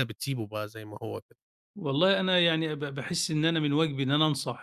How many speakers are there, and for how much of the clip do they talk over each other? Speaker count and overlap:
two, no overlap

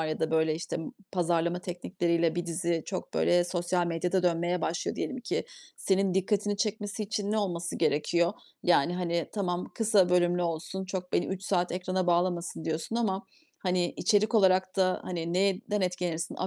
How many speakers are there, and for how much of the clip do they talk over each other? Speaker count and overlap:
one, no overlap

